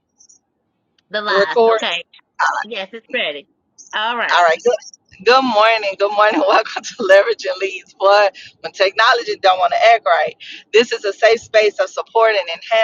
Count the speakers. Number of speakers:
two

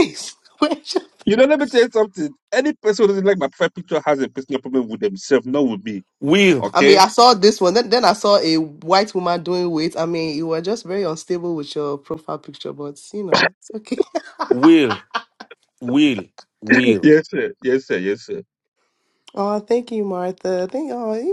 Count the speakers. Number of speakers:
three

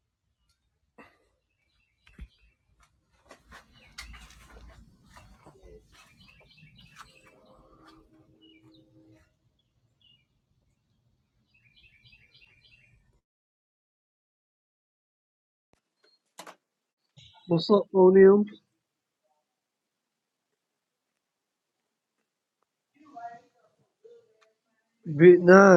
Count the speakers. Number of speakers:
one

